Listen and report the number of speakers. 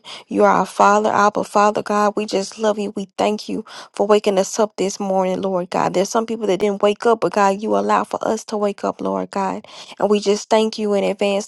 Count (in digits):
1